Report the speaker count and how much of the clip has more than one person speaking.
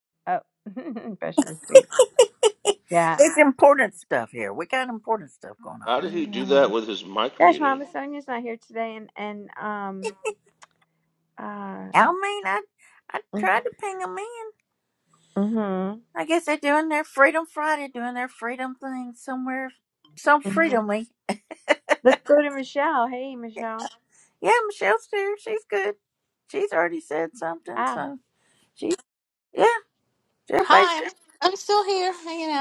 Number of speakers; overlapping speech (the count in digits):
4, about 8%